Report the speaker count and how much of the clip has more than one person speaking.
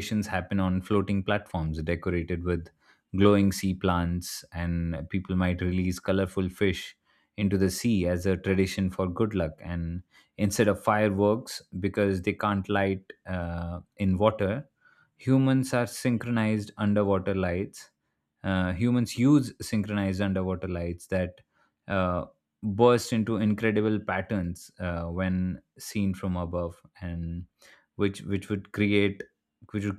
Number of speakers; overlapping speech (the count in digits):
1, no overlap